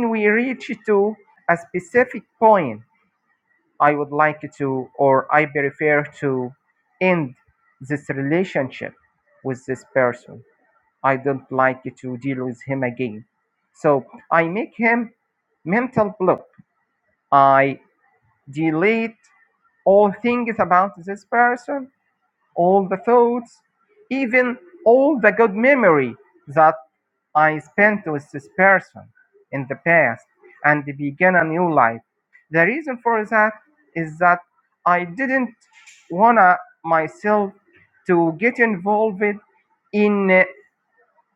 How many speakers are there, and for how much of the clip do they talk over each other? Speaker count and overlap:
1, no overlap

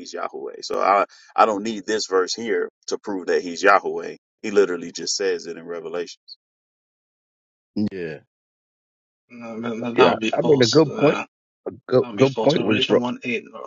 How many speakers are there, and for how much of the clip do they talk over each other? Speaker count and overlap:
3, about 16%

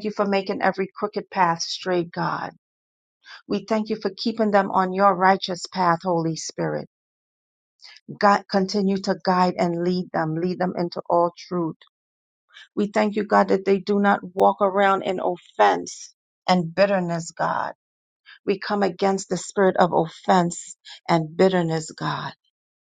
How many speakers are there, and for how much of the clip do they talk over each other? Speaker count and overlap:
1, no overlap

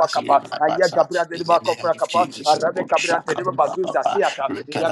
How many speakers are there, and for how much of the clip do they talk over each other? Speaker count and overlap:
1, no overlap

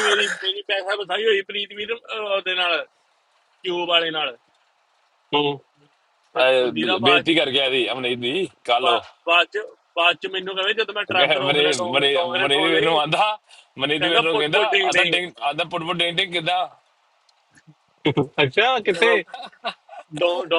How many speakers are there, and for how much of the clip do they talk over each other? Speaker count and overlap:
3, about 20%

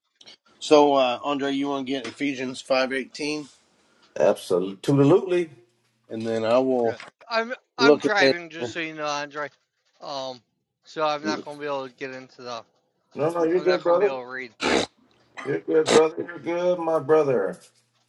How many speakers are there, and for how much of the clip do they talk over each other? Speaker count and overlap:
3, about 9%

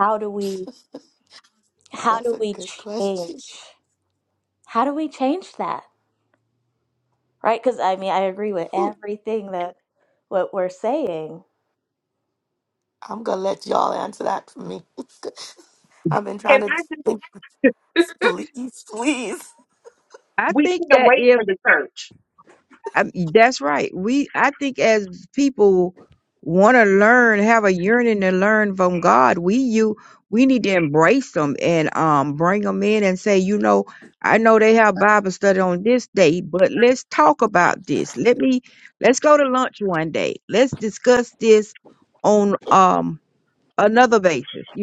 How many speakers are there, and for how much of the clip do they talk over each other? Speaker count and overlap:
4, about 6%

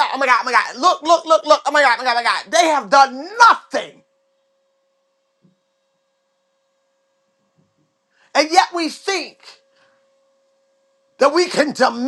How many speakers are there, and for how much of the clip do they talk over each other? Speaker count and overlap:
1, no overlap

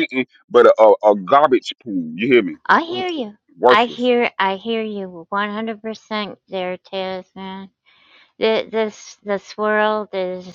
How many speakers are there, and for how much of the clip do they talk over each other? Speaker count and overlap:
2, about 3%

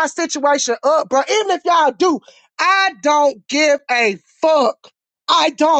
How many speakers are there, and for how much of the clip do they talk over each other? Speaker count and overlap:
1, no overlap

